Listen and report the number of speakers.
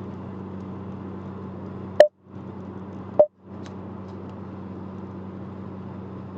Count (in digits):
0